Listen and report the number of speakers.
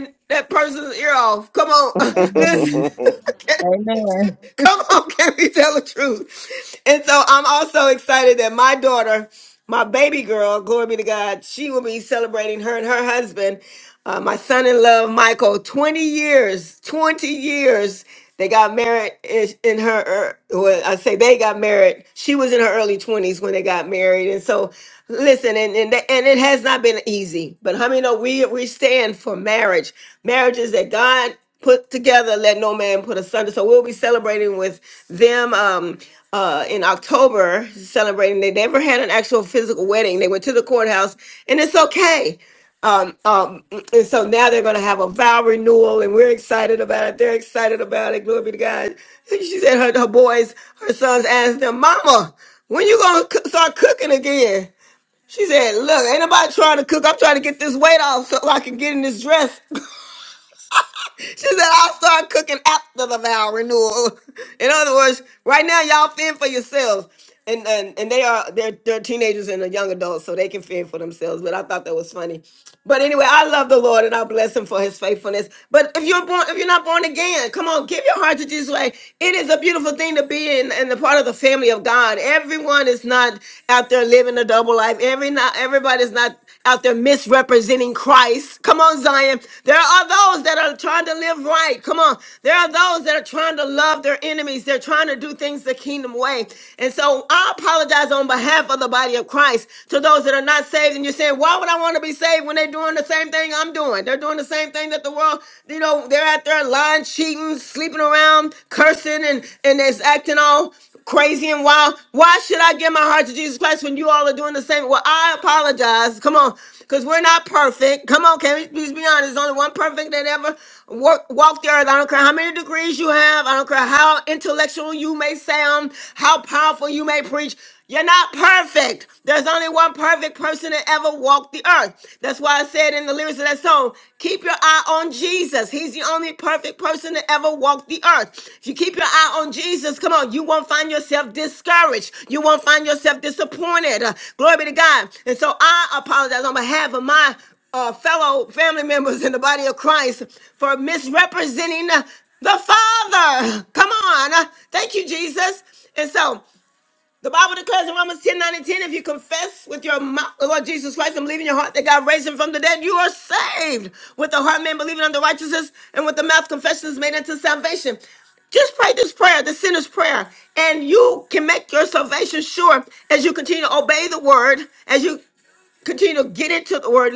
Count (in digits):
2